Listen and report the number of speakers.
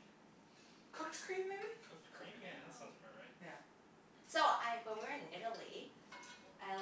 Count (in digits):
3